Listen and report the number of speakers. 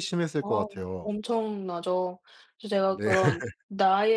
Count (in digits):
2